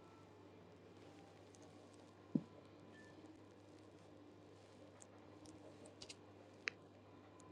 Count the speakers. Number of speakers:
zero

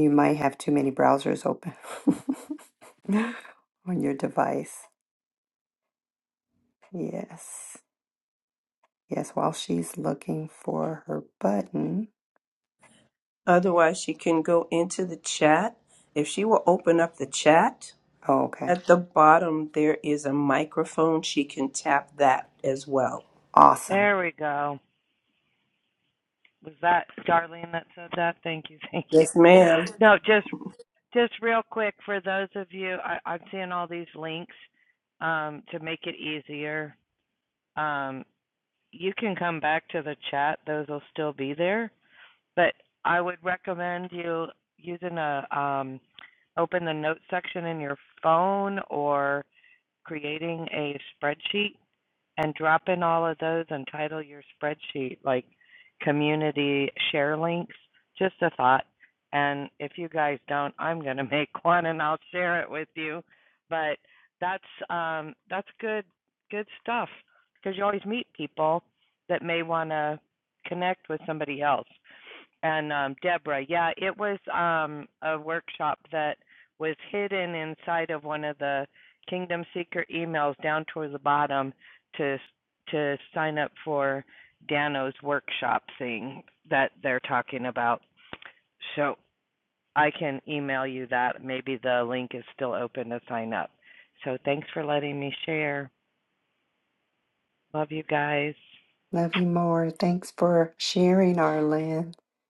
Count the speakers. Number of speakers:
three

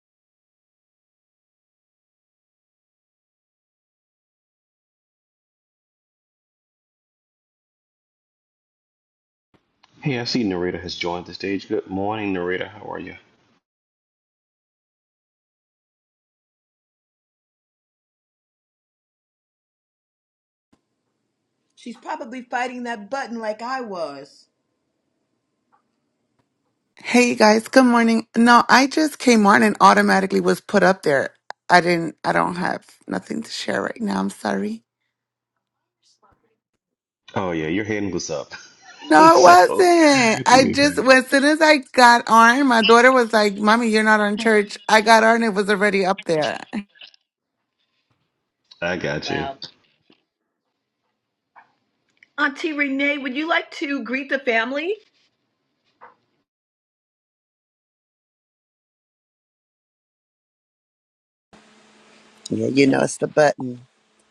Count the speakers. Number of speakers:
four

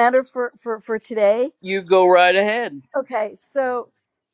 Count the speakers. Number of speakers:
two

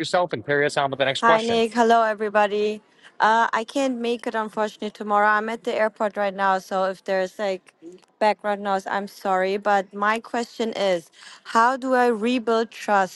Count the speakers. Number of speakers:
two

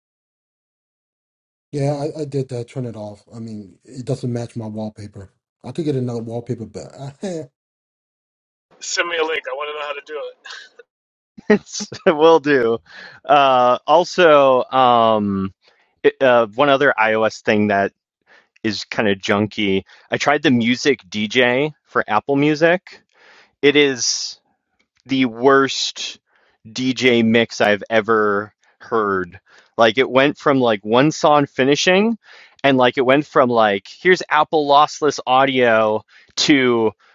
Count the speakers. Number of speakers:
three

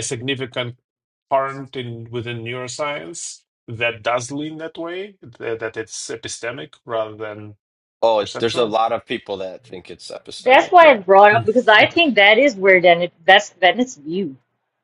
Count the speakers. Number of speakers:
three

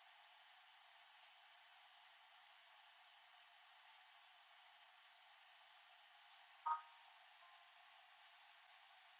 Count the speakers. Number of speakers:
zero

